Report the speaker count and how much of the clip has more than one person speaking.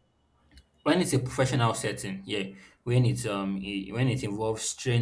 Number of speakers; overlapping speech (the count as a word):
one, no overlap